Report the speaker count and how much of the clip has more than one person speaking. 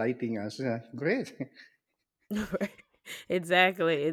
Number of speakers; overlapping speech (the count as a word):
two, no overlap